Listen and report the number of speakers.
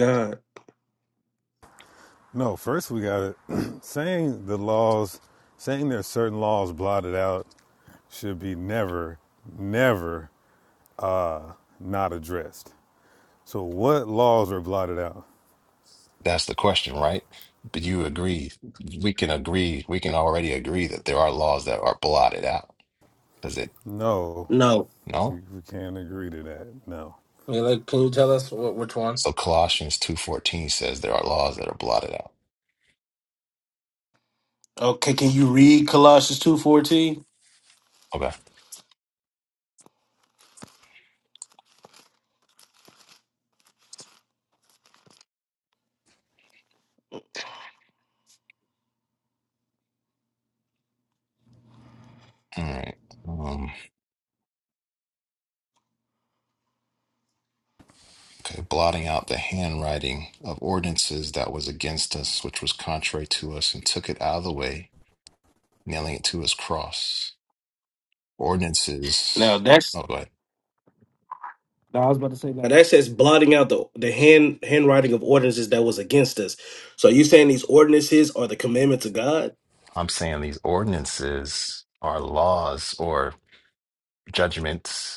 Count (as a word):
four